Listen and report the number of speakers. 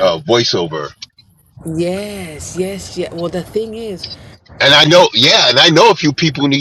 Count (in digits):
2